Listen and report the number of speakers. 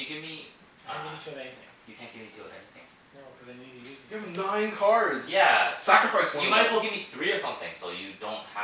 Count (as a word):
three